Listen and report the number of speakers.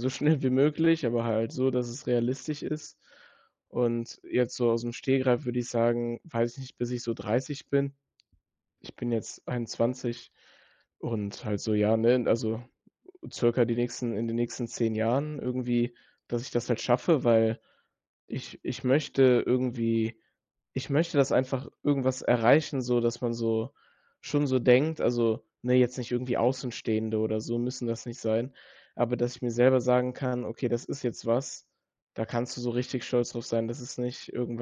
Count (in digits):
1